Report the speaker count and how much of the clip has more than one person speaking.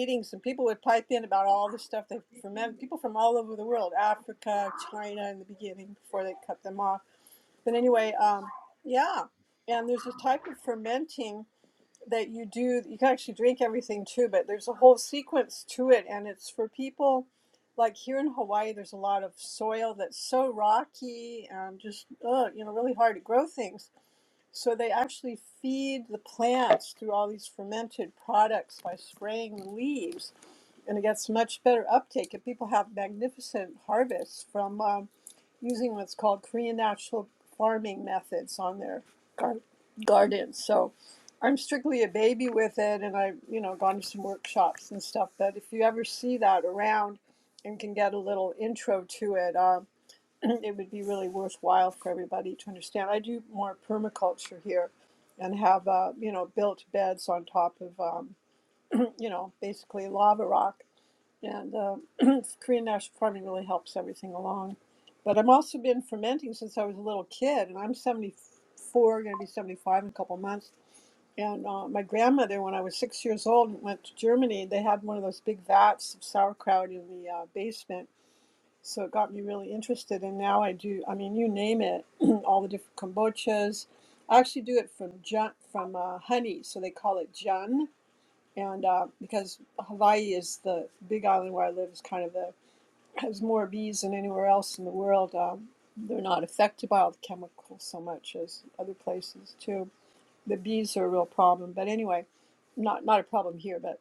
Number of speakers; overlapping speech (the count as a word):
one, no overlap